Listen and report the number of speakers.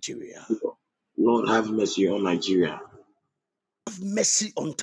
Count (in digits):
2